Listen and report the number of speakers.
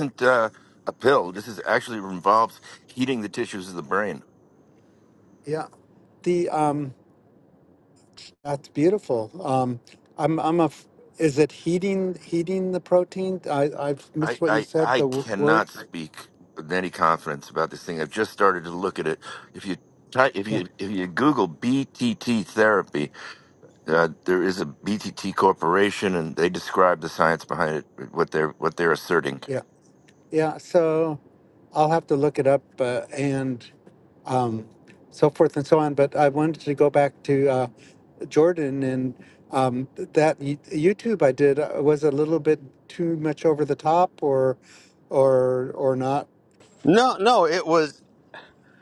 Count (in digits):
3